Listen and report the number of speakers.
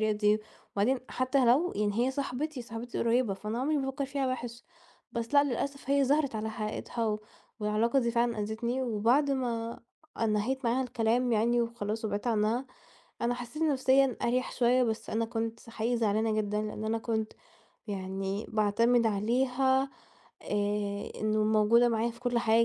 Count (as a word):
one